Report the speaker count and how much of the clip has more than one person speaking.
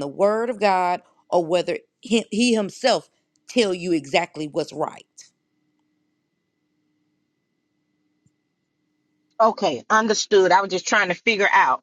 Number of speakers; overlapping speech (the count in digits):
2, no overlap